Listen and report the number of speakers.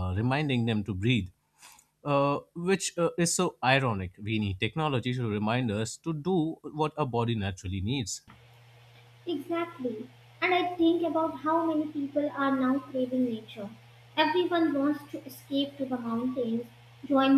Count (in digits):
2